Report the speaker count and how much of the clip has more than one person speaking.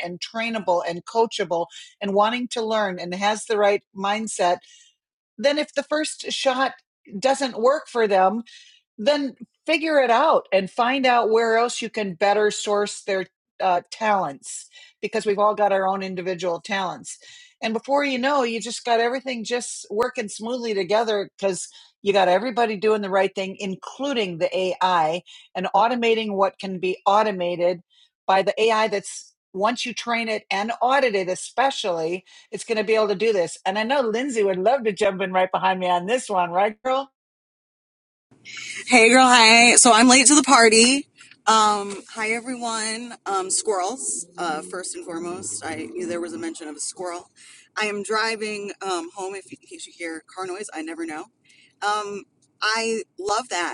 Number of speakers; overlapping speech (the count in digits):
2, no overlap